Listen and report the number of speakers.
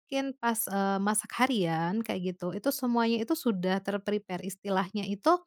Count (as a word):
one